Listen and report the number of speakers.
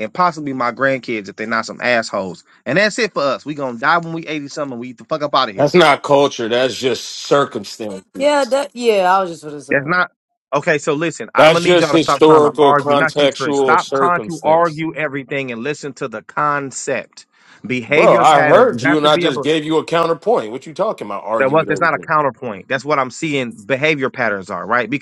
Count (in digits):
3